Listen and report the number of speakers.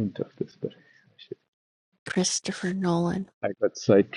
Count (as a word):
two